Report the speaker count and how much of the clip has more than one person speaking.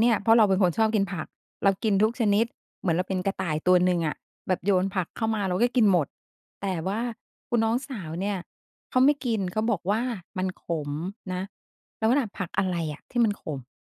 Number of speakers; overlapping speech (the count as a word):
one, no overlap